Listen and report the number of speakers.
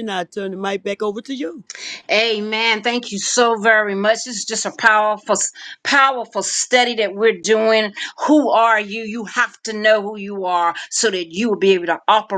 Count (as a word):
two